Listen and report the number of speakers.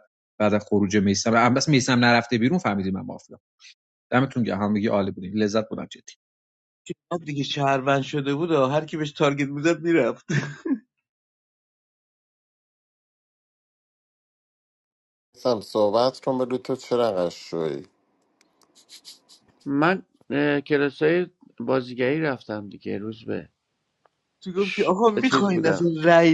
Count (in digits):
4